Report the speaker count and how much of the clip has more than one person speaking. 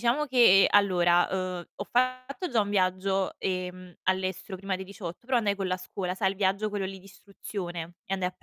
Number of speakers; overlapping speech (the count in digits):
1, no overlap